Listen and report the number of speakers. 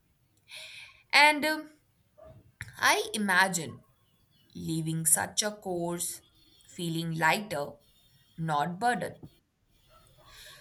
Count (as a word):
one